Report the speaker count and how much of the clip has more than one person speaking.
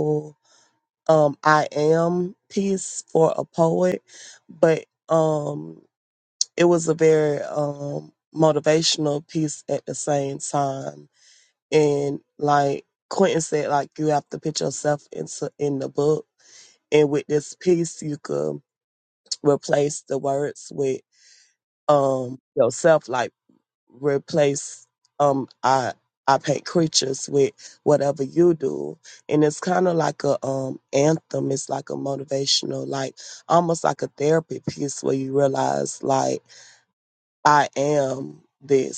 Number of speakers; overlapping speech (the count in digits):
1, no overlap